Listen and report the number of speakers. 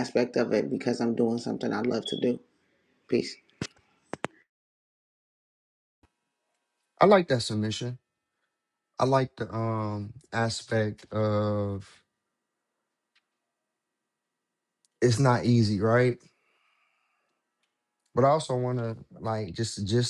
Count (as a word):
two